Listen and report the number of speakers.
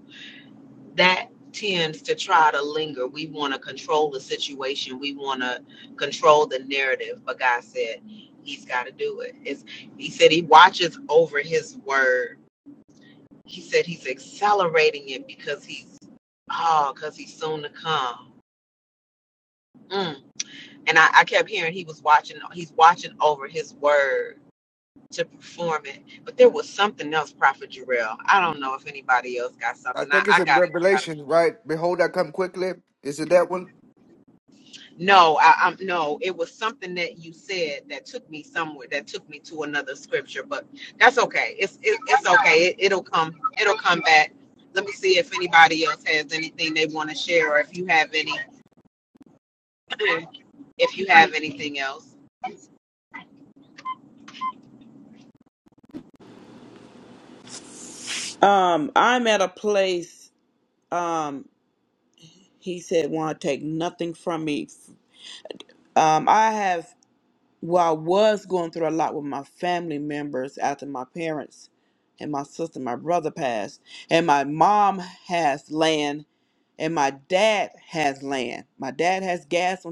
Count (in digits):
3